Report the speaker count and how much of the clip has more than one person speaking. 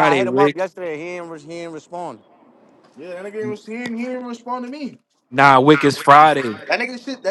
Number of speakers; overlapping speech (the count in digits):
3, about 7%